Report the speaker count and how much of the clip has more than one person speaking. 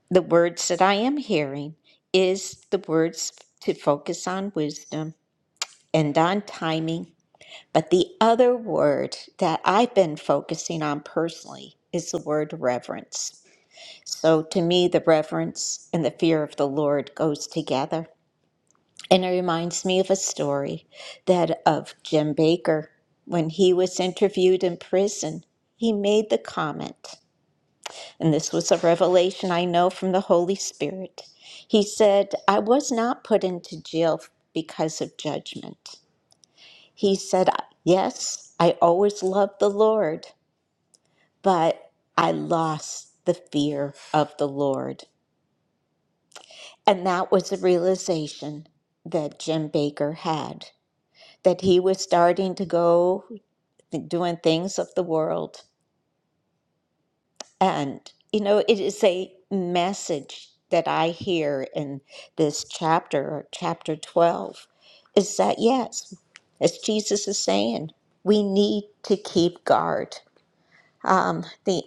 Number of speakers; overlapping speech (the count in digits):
1, no overlap